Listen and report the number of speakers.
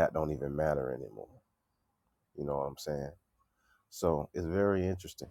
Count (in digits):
1